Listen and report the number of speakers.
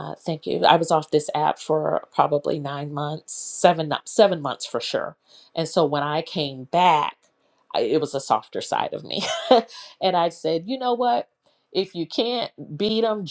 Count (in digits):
1